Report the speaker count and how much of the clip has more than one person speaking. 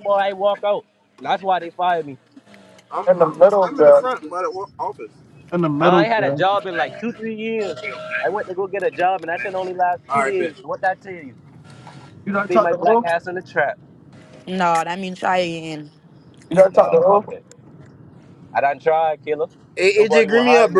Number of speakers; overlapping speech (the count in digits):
4, about 20%